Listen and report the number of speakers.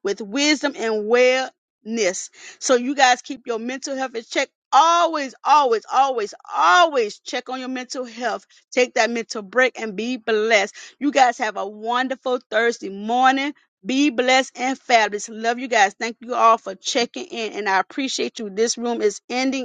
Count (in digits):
1